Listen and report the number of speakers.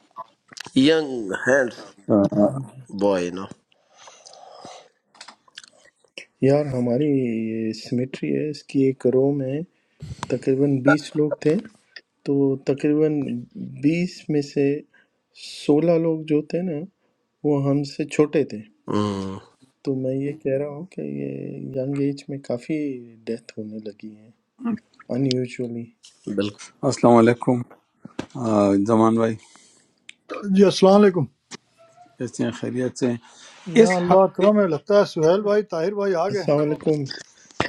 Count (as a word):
four